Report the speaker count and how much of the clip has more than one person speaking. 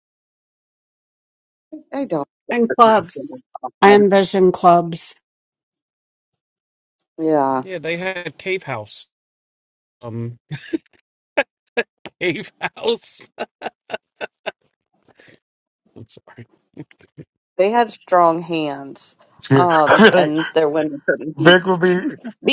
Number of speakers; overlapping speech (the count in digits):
4, about 4%